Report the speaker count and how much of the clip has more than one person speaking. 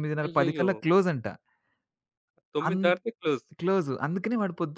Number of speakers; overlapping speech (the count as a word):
two, about 14%